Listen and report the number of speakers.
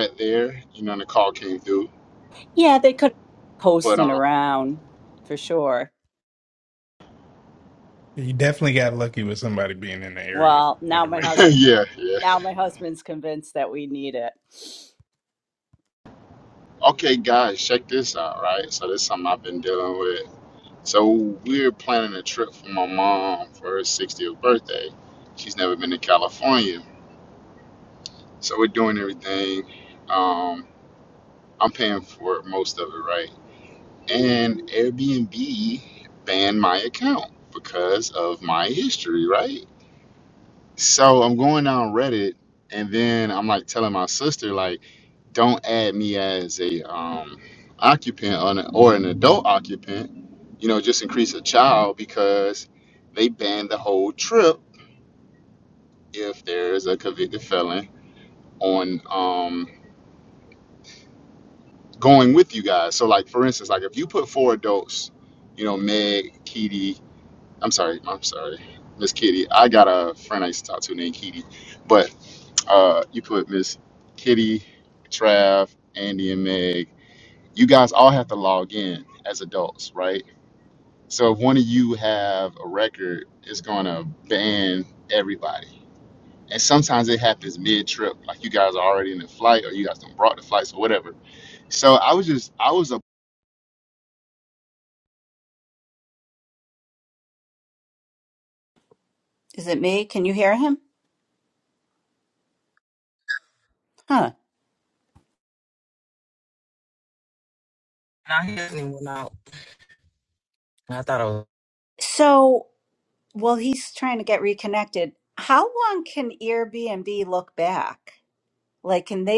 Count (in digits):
4